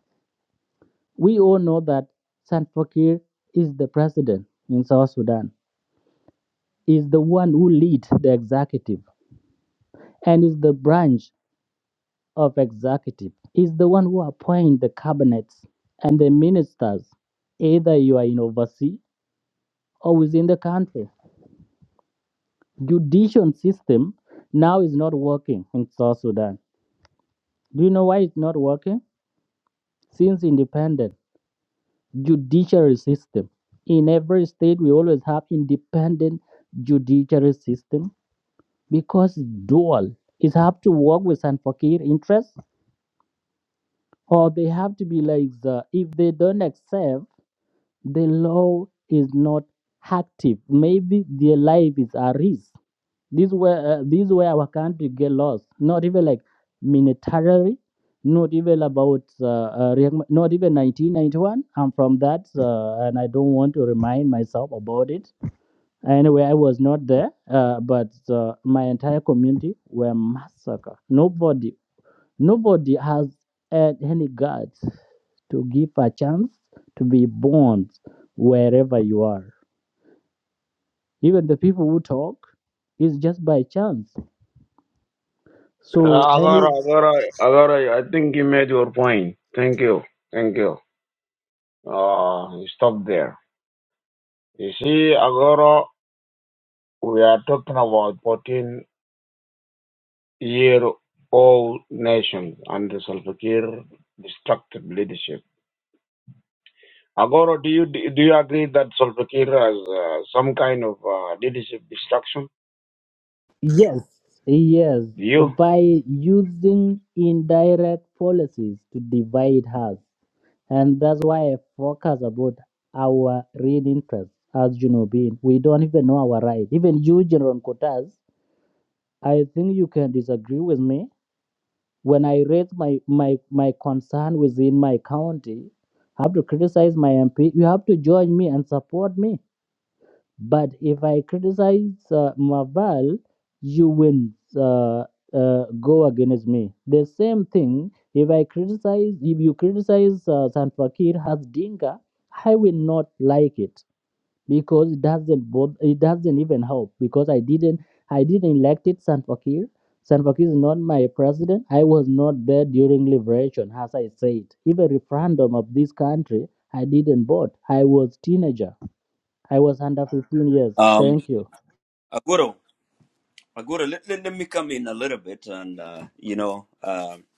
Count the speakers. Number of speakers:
three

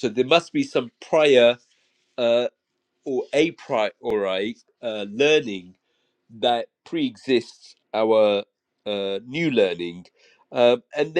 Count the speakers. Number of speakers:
one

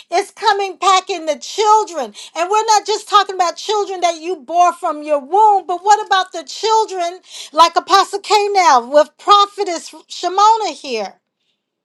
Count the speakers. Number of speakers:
one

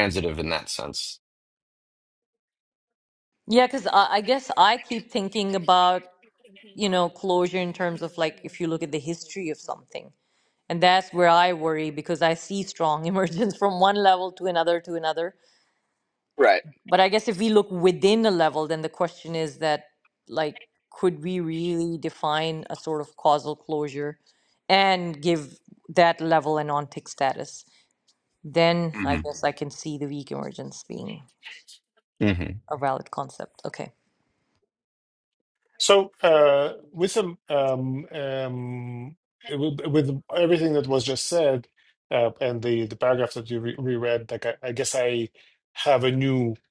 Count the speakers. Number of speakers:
three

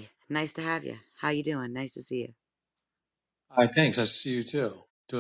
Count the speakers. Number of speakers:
two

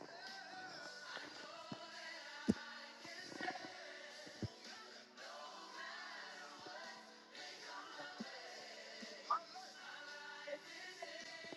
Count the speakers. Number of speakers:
zero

